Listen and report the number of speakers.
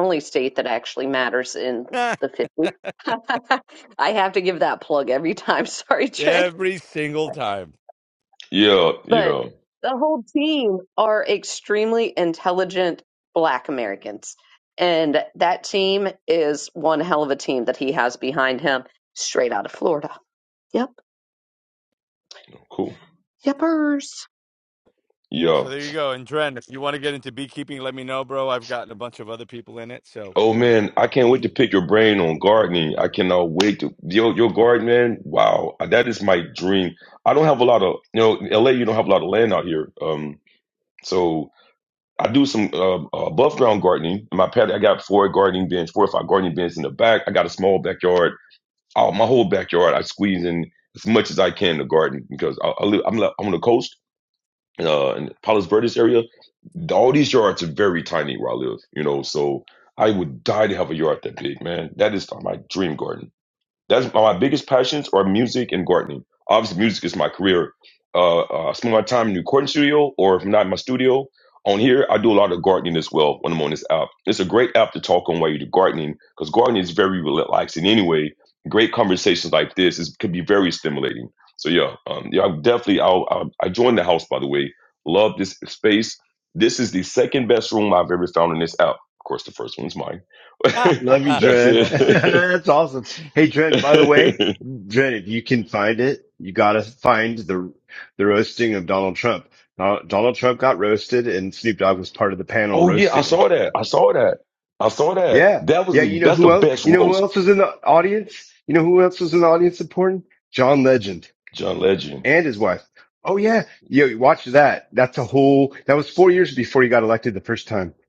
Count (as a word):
four